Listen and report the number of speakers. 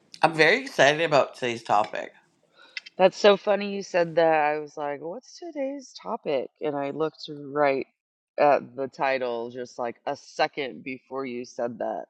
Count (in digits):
2